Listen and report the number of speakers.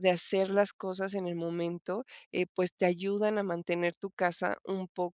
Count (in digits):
1